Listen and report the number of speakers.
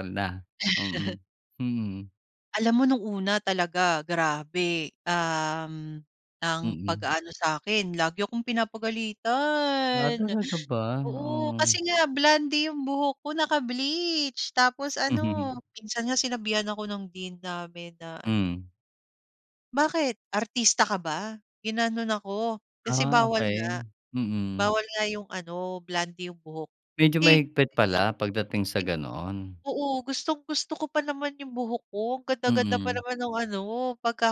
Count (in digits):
2